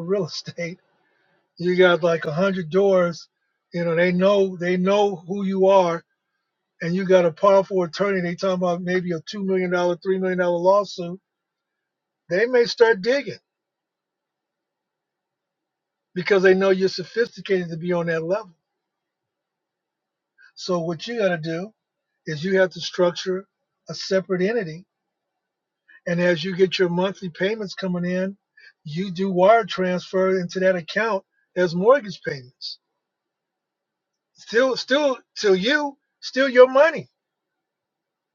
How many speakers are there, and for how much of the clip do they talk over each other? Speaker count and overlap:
1, no overlap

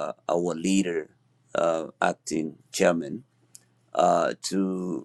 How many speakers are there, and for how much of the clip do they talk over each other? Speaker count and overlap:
1, no overlap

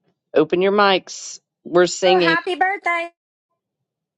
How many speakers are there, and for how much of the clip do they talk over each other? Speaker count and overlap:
2, about 8%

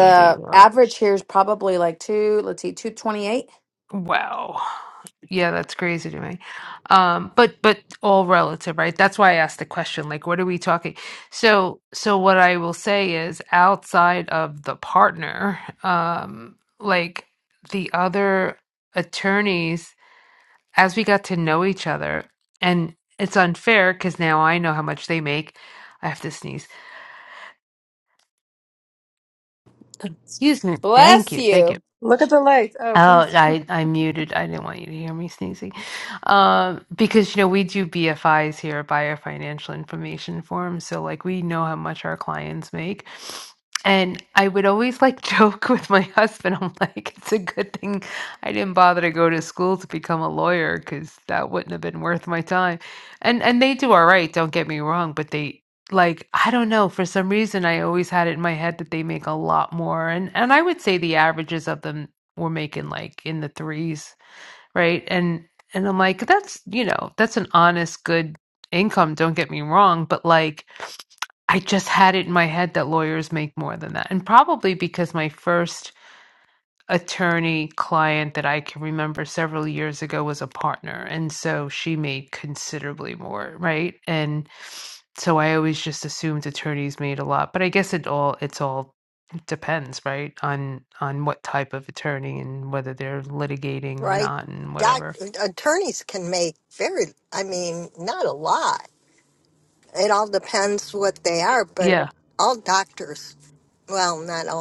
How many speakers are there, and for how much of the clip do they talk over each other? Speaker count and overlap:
4, about 3%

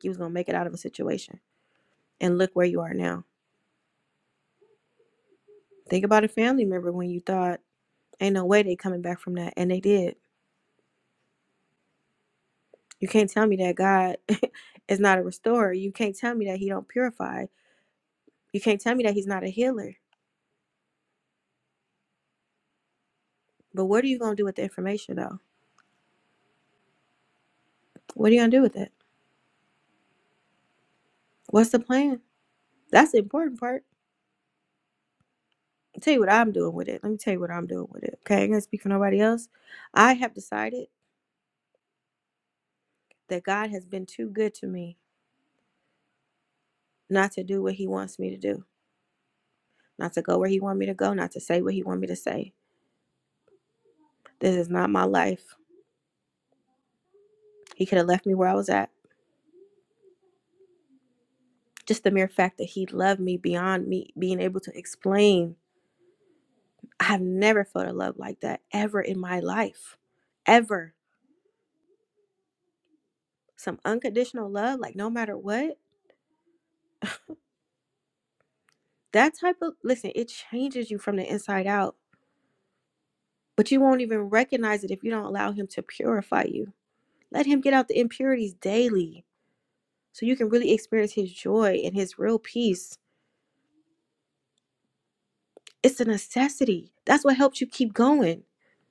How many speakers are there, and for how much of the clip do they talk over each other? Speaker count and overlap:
1, no overlap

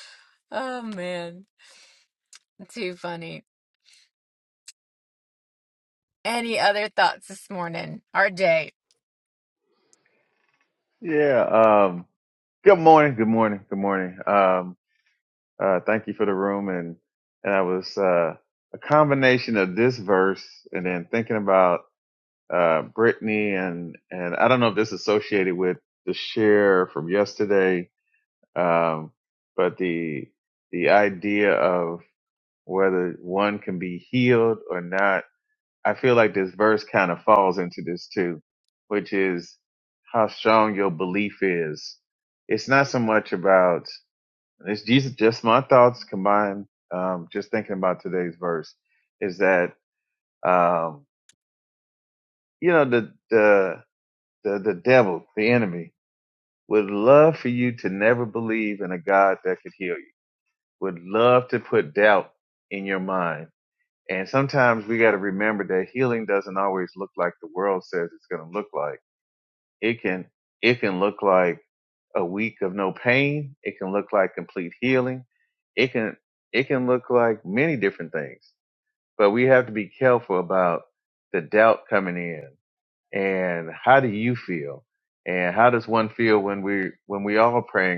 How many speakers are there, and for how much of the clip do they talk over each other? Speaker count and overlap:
2, no overlap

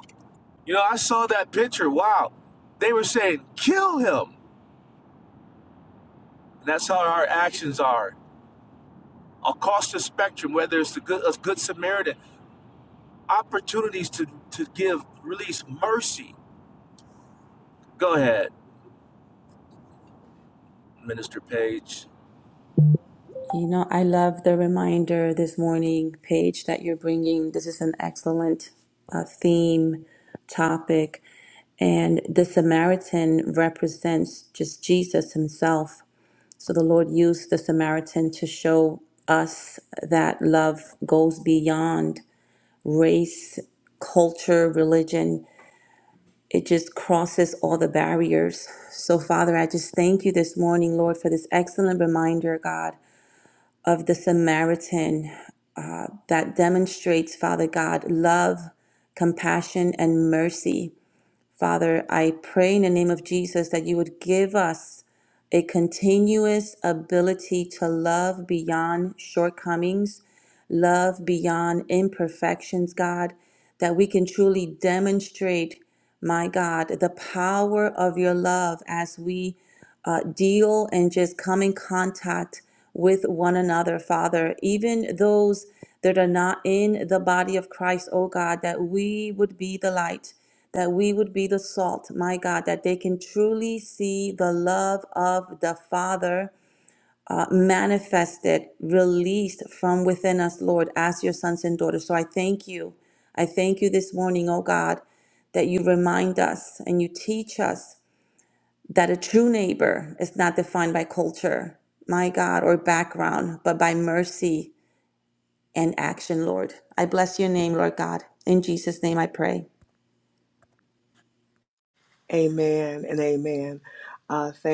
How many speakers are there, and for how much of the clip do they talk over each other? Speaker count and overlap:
3, no overlap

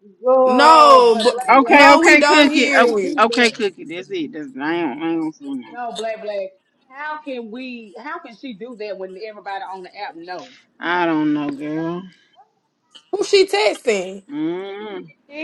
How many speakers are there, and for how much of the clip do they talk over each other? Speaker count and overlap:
3, about 20%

